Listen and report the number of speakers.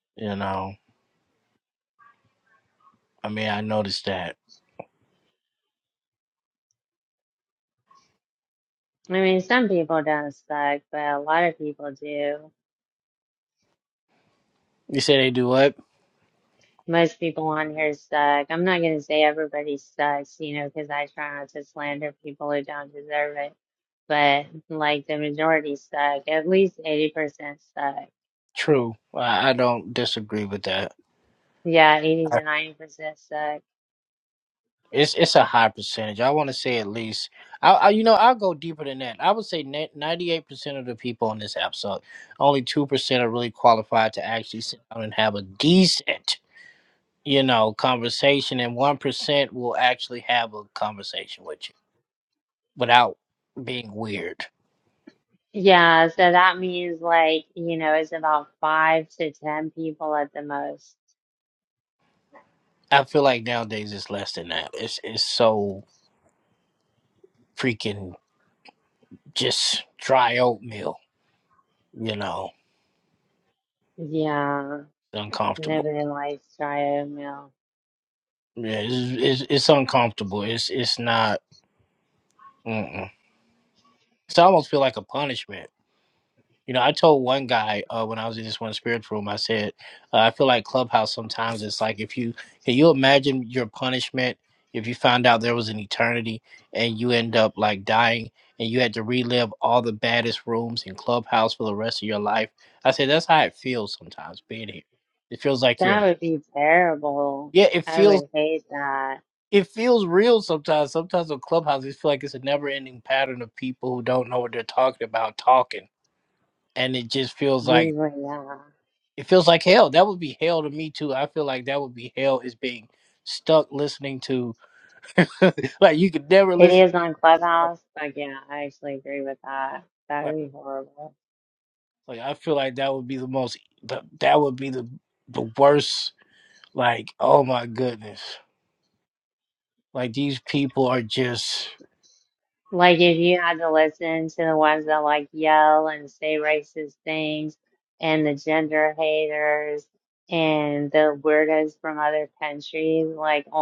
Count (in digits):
2